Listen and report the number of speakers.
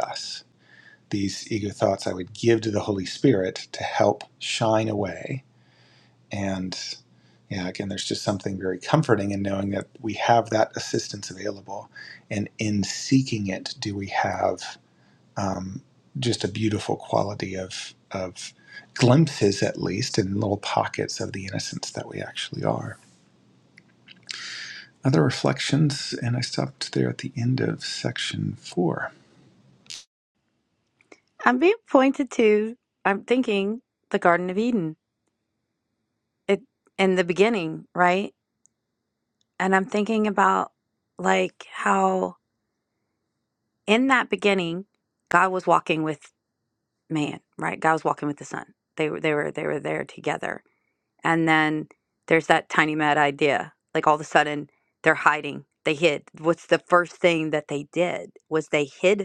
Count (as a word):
two